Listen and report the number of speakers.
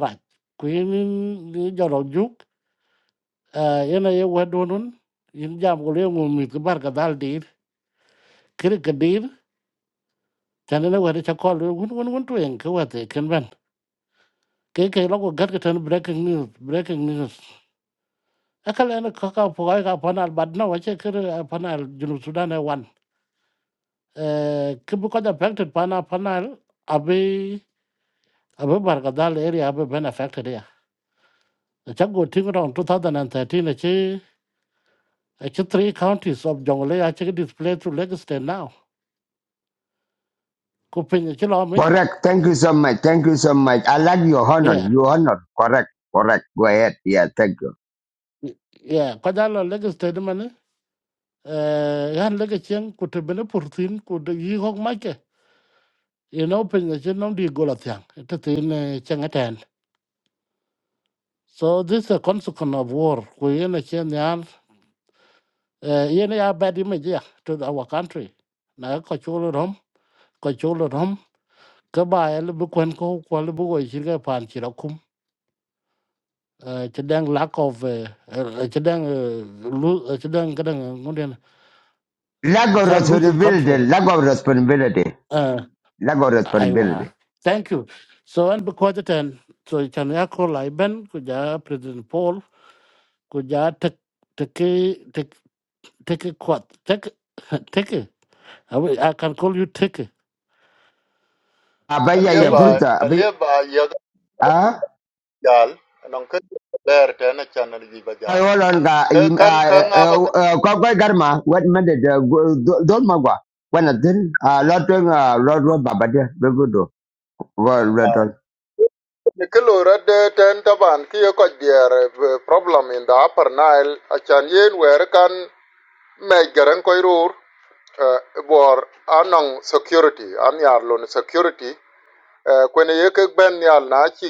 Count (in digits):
3